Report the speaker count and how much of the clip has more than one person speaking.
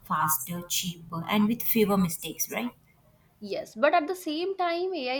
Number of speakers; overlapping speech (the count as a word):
two, no overlap